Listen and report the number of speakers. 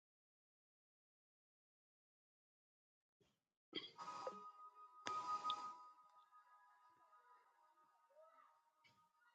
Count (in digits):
0